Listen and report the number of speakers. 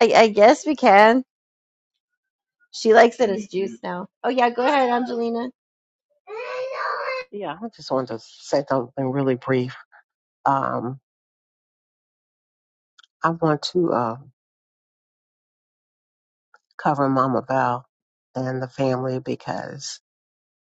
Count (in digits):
2